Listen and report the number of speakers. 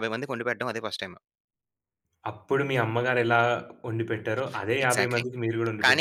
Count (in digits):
2